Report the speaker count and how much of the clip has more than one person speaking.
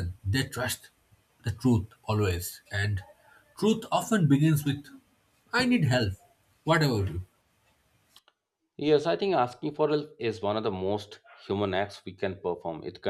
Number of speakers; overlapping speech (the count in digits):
2, no overlap